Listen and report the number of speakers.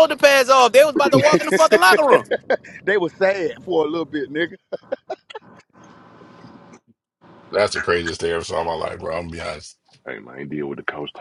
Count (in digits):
4